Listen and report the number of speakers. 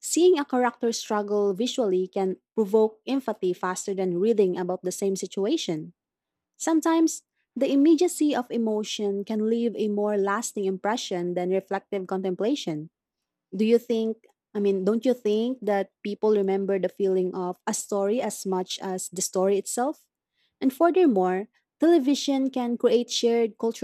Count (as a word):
one